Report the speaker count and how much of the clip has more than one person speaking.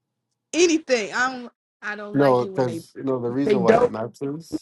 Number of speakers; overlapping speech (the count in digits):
2, about 25%